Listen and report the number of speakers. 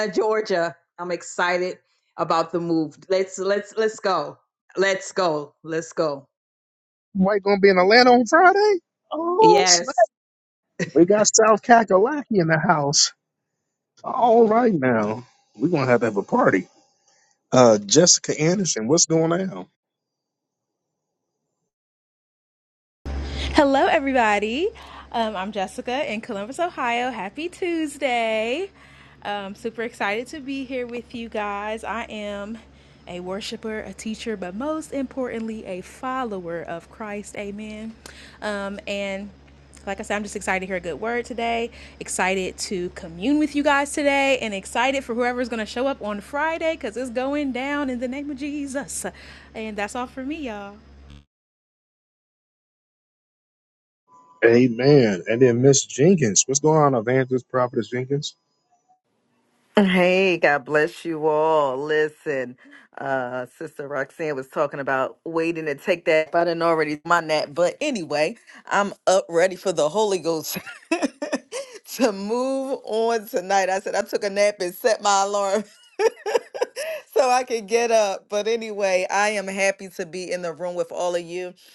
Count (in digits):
4